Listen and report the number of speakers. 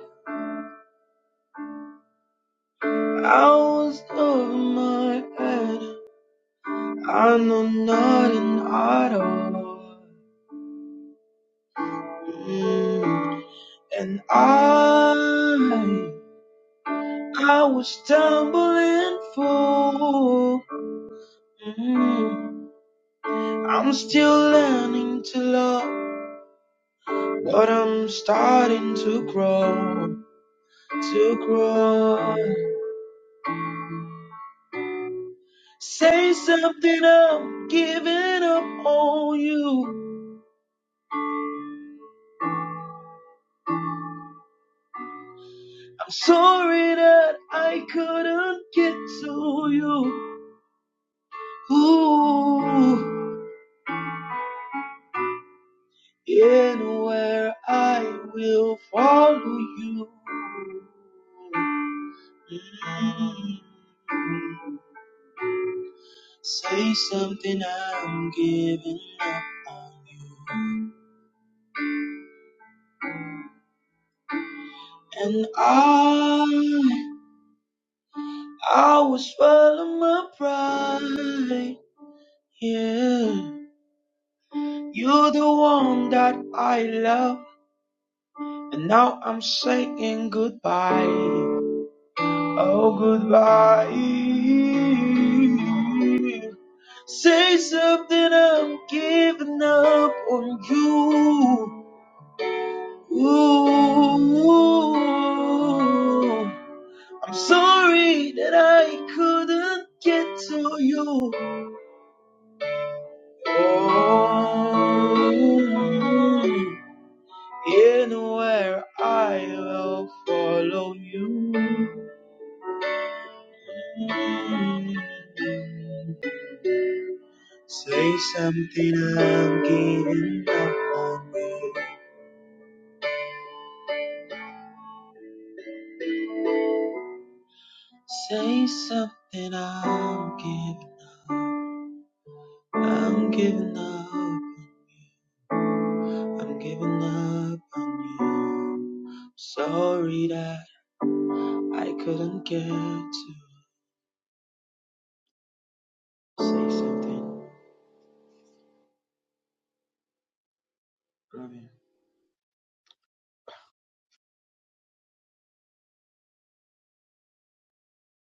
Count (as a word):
one